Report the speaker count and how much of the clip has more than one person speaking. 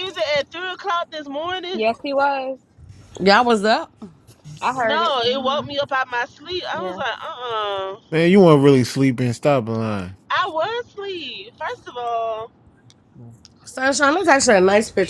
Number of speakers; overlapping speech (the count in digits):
4, about 8%